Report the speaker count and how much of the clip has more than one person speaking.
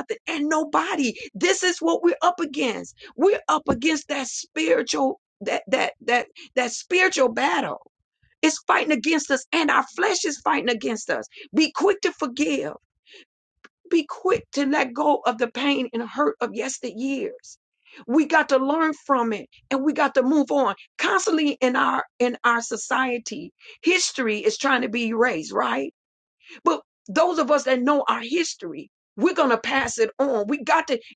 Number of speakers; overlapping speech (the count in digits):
1, no overlap